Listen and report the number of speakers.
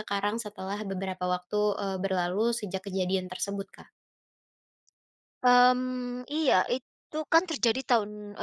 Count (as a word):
two